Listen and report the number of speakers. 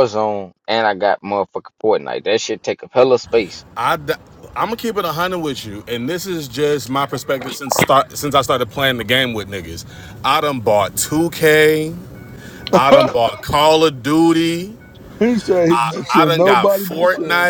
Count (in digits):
3